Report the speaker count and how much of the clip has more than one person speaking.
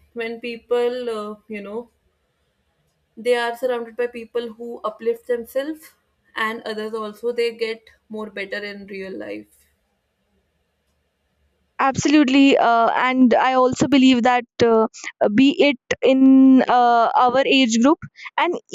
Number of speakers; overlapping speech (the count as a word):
two, no overlap